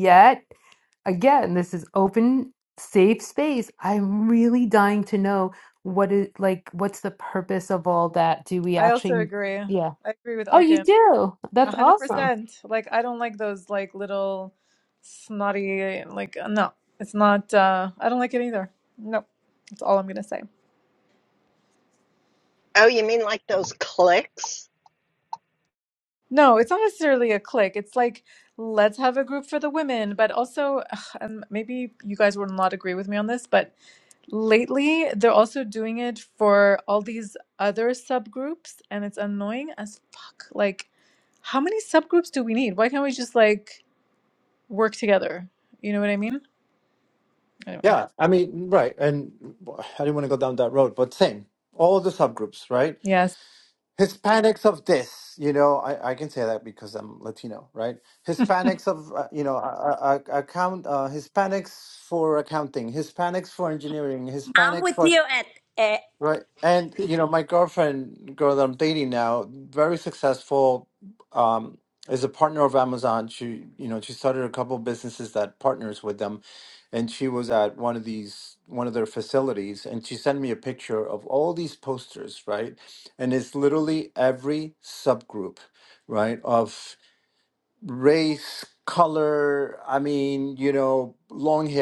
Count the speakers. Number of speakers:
five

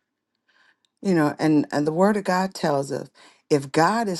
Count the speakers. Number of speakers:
one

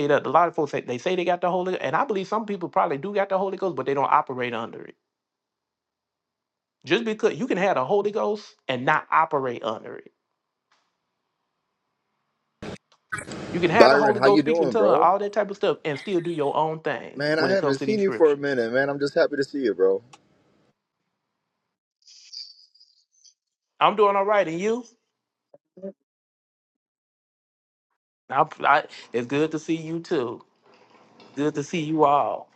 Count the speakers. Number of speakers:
two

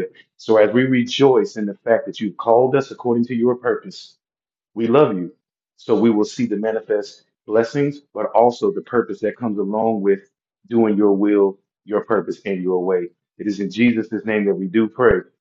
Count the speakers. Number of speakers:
one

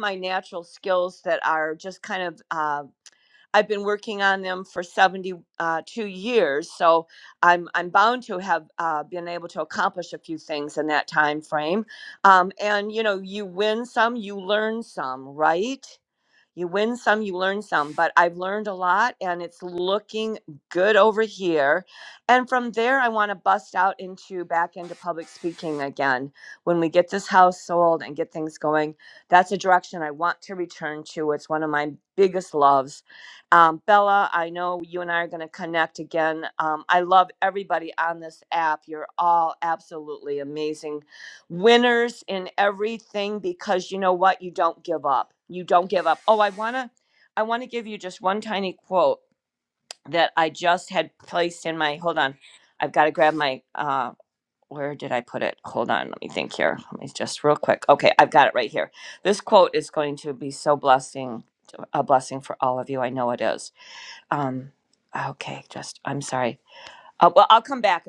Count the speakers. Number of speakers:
one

